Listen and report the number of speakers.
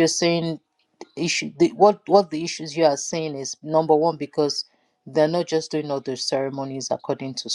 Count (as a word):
one